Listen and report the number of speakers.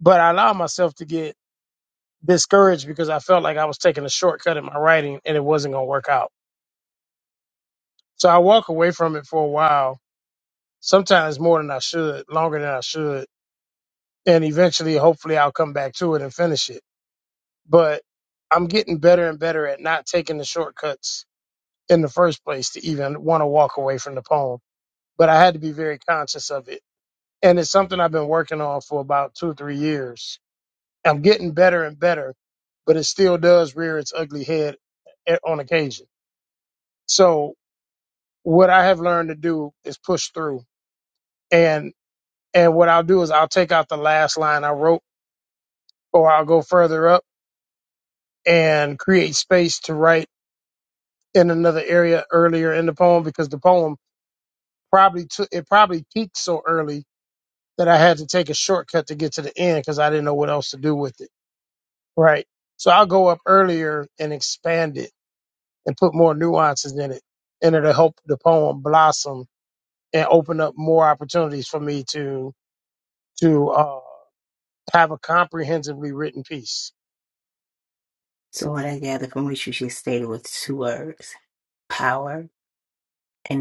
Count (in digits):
2